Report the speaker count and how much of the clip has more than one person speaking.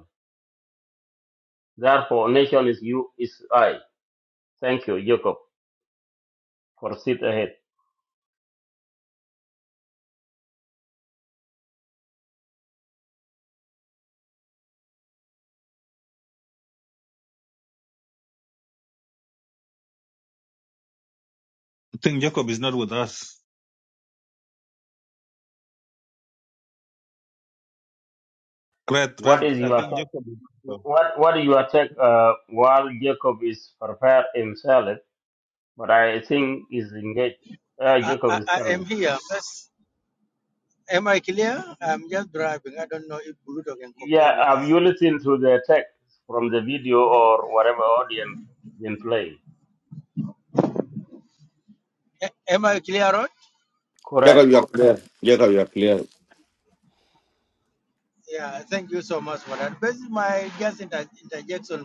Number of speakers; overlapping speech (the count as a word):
four, about 4%